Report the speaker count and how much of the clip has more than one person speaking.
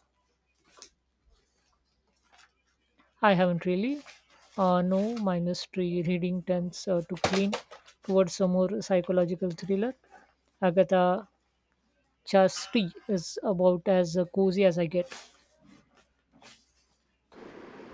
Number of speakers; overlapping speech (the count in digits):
1, no overlap